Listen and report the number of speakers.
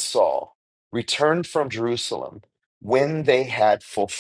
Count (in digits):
1